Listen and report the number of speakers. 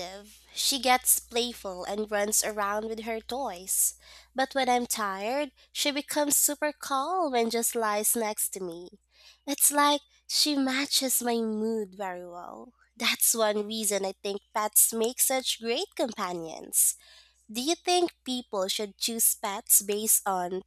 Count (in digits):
1